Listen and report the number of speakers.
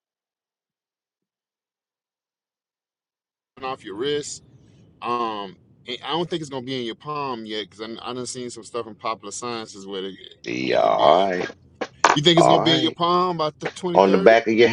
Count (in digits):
2